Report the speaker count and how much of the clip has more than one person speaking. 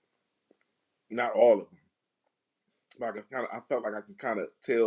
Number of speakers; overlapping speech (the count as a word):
one, no overlap